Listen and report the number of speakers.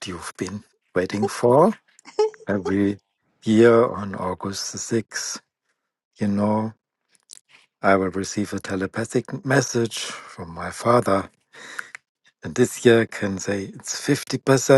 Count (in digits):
1